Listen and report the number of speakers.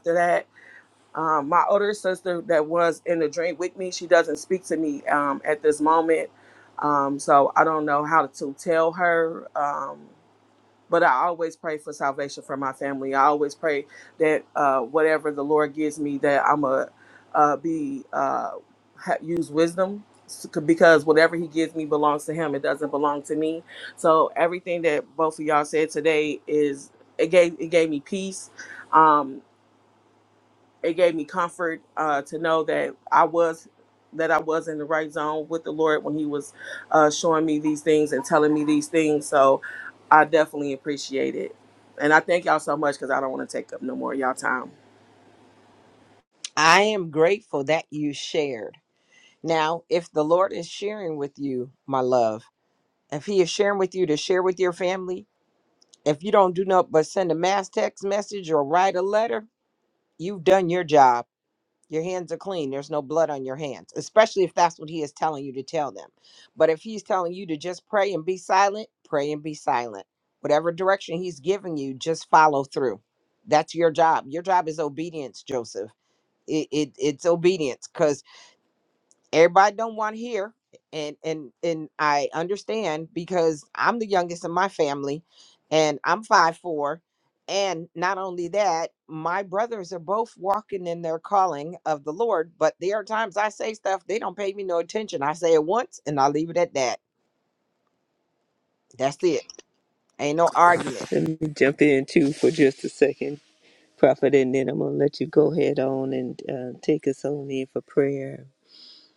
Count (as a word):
three